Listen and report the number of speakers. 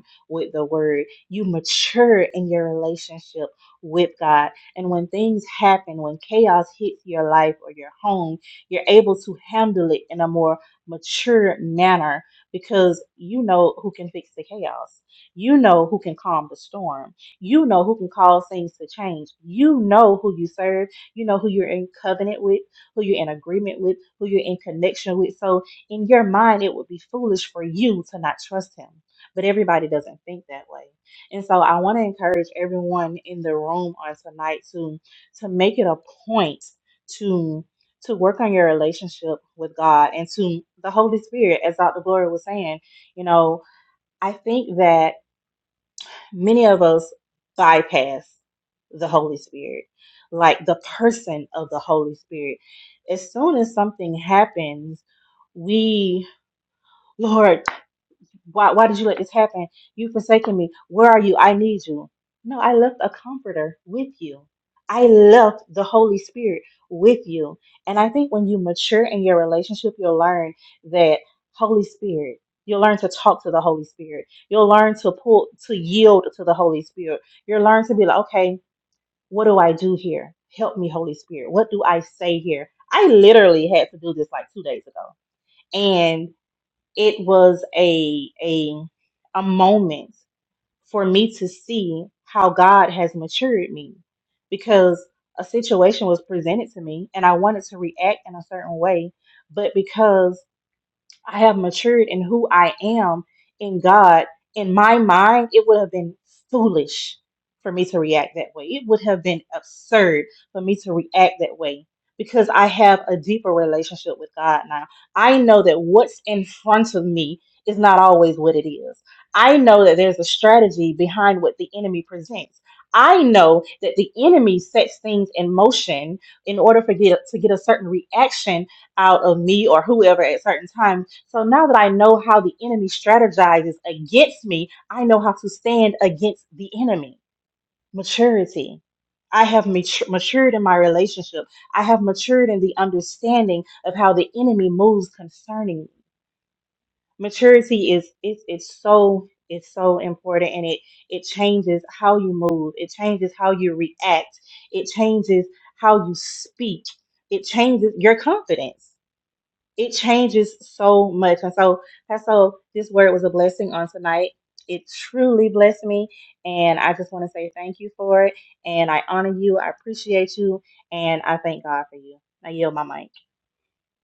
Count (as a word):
one